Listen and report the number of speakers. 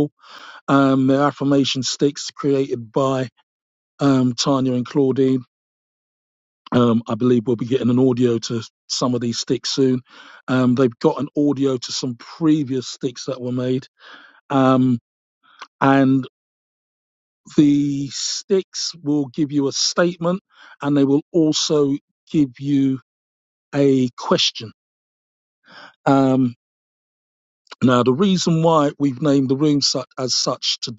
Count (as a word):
one